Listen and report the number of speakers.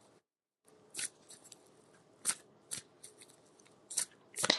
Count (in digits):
0